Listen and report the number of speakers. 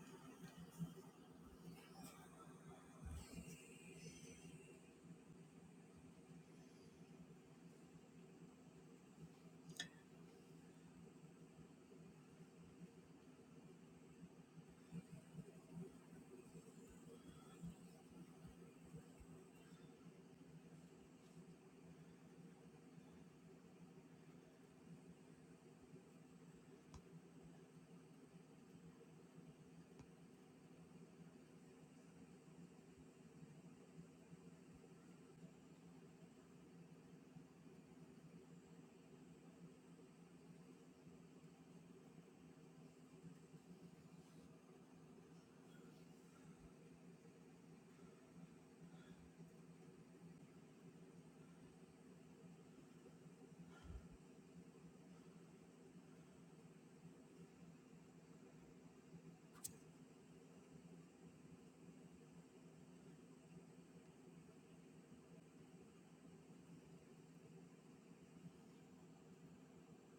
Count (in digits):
0